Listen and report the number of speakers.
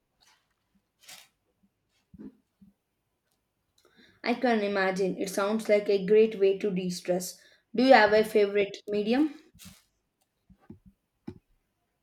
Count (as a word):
one